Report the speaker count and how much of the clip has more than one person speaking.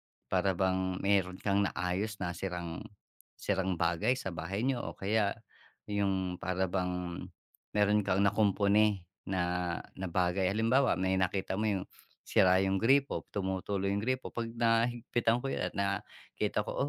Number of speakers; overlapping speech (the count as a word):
one, no overlap